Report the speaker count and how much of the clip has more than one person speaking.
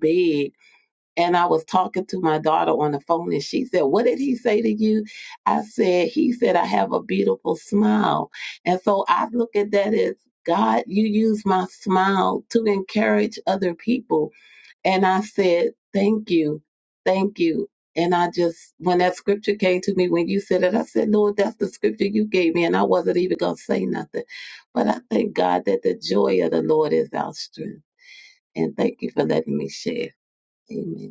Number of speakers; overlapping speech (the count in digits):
1, no overlap